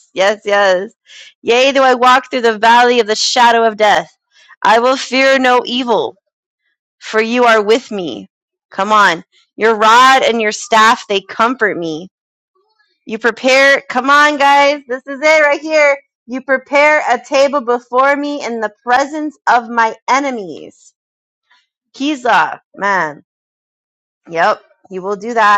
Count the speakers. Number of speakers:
1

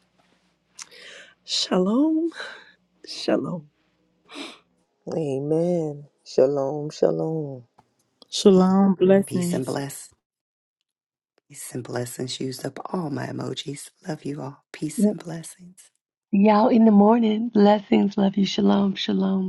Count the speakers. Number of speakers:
5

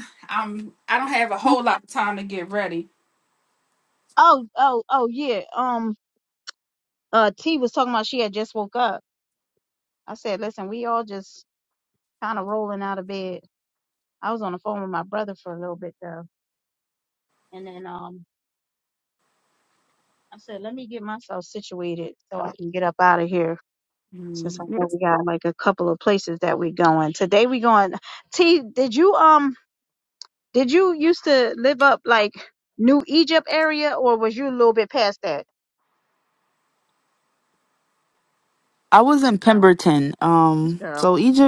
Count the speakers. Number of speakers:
3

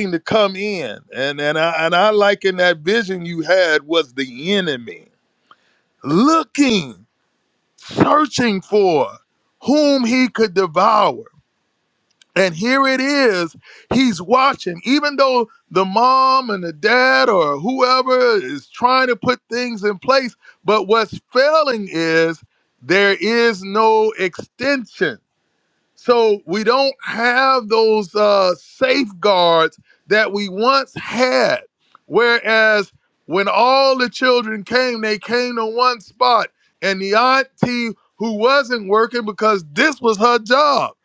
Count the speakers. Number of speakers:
1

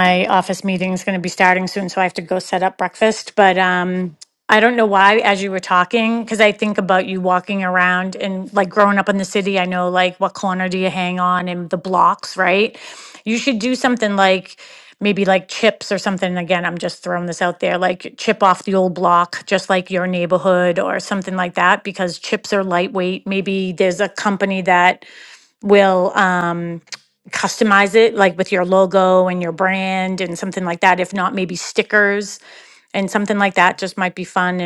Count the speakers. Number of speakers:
1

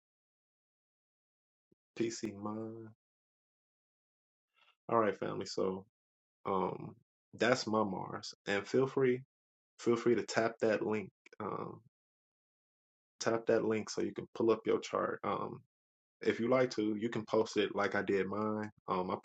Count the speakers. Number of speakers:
1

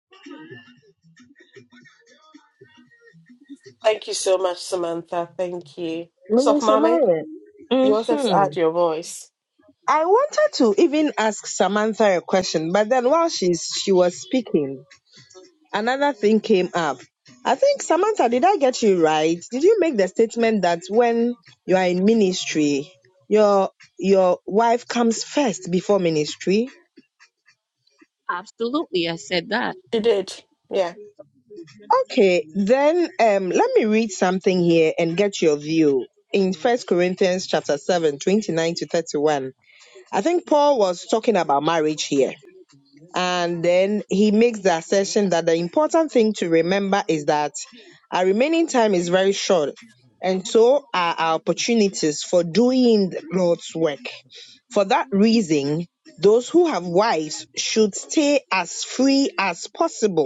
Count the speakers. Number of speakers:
3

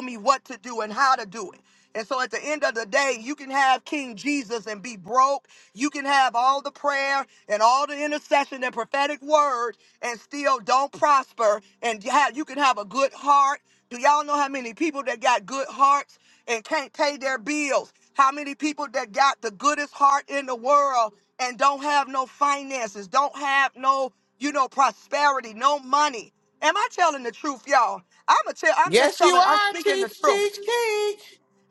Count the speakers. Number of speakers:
2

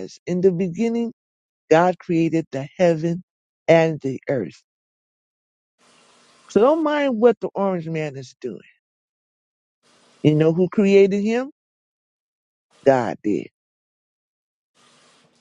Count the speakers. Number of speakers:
1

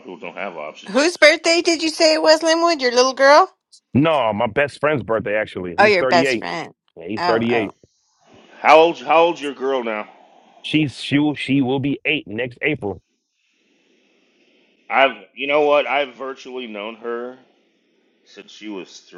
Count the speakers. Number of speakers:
3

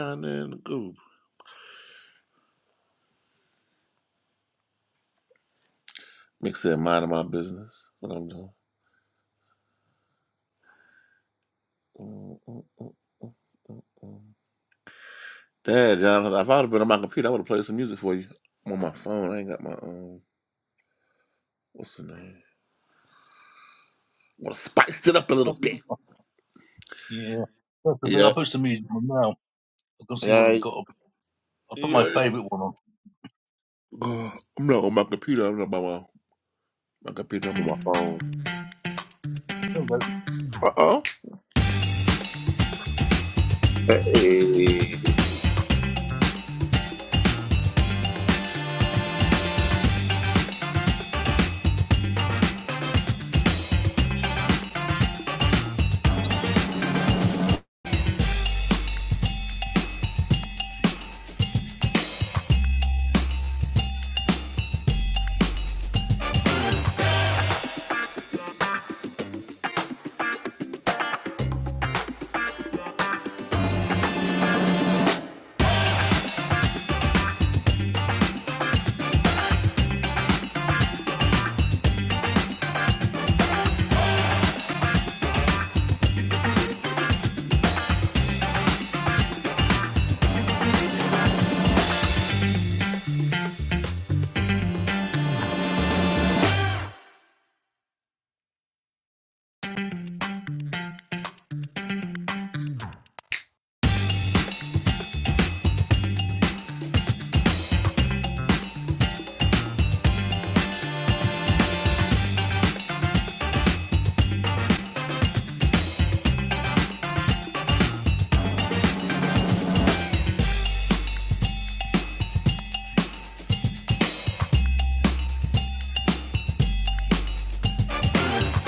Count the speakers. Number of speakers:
2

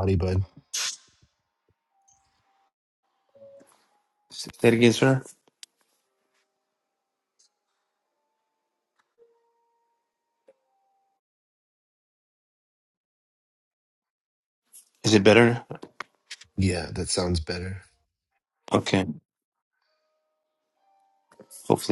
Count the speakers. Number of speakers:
2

